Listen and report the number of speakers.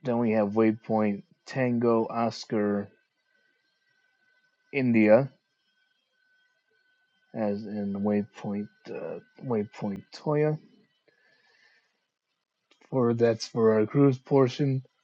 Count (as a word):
one